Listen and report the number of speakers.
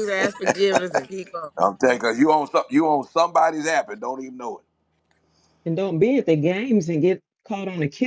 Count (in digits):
3